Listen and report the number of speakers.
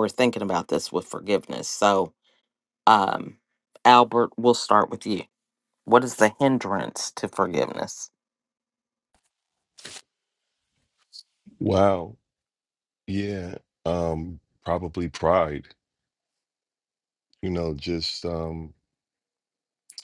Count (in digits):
2